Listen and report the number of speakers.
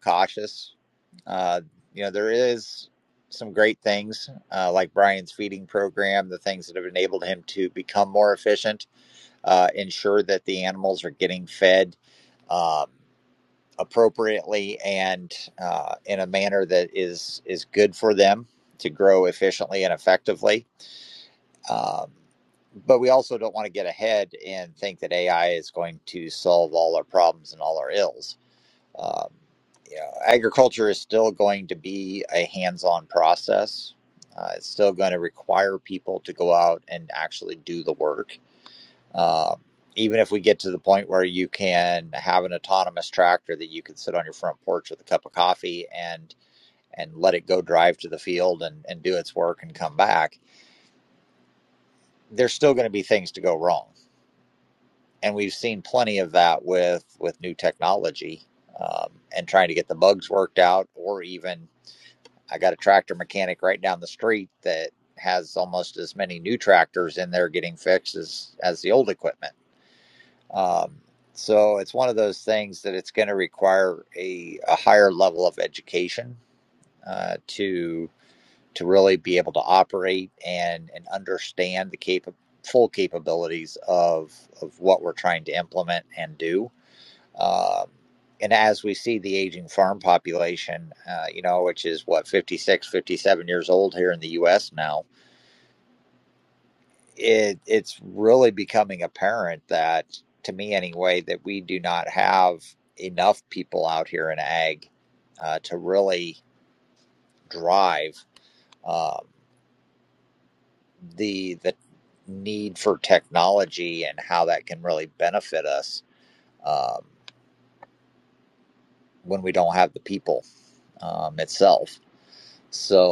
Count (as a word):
one